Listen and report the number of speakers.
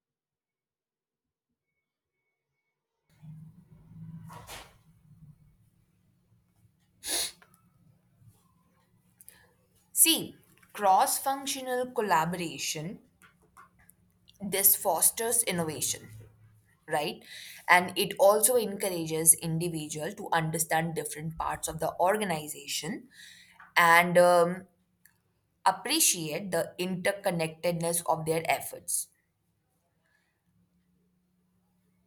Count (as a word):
one